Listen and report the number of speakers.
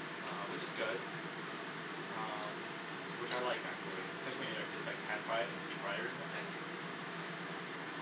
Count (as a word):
one